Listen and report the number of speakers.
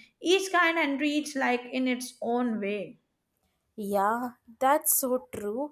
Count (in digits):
2